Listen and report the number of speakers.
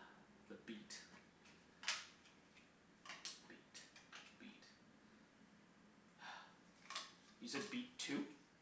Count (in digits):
1